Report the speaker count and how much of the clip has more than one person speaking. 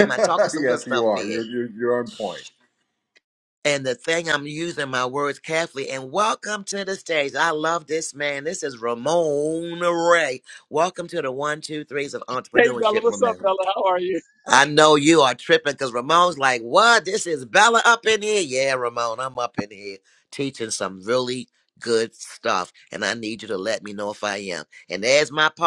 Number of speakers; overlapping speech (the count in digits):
3, about 9%